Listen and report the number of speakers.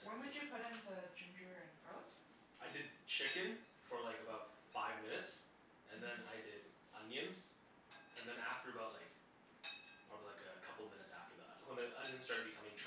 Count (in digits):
2